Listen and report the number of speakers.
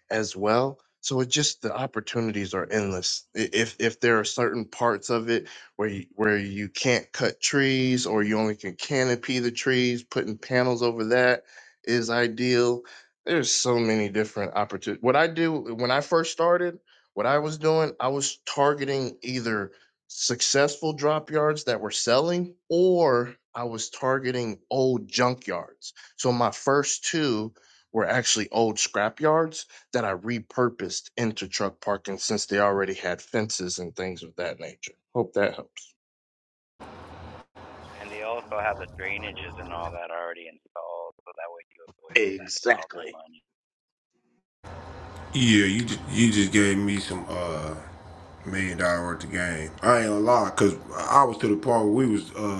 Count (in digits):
3